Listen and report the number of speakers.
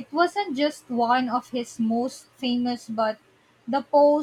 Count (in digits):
1